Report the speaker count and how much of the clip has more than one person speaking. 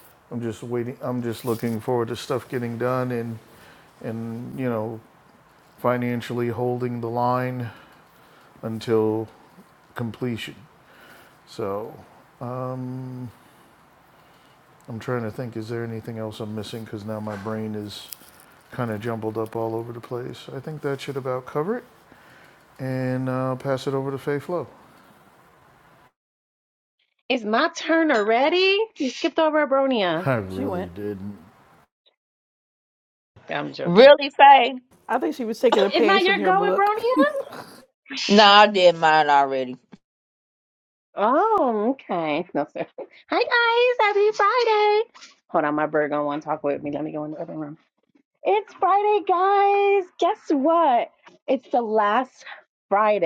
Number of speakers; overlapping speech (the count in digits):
4, about 4%